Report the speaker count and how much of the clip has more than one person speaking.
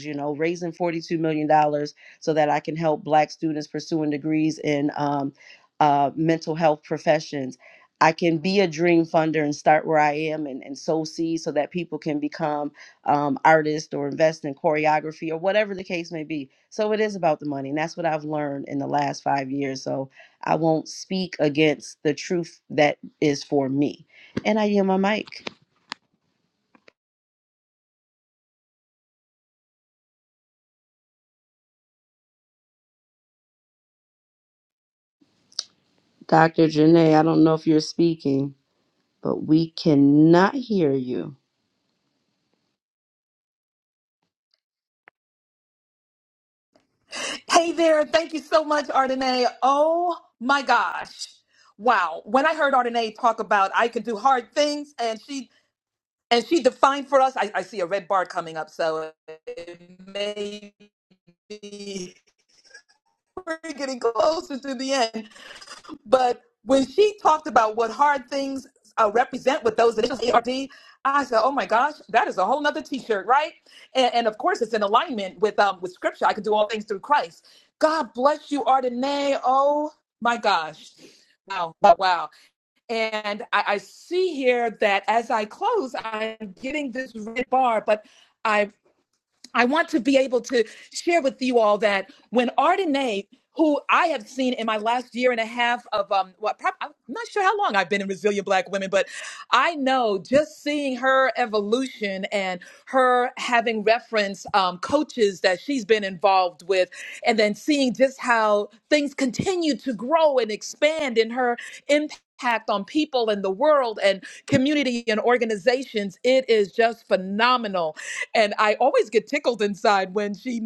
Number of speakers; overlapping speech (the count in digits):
2, no overlap